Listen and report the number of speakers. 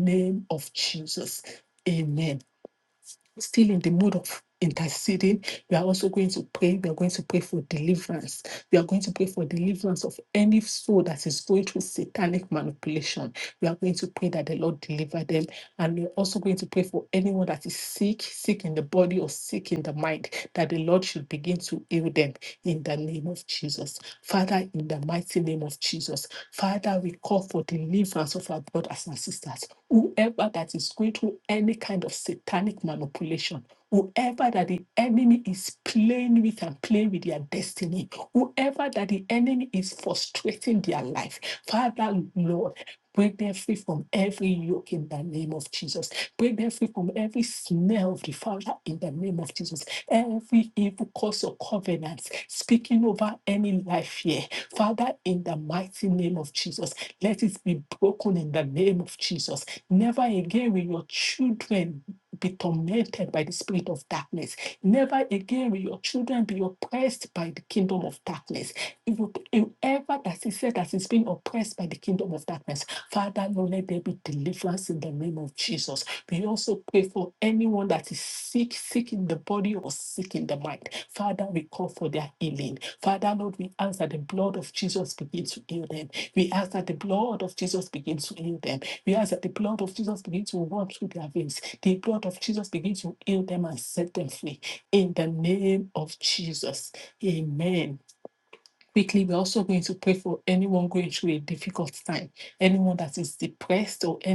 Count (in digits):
1